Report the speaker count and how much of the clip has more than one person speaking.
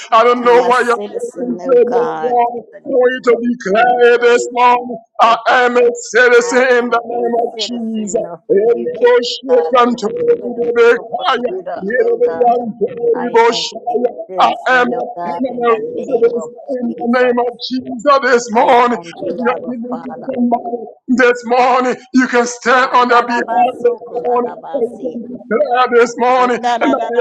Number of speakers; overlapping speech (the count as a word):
two, about 60%